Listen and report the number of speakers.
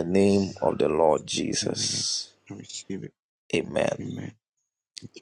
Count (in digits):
2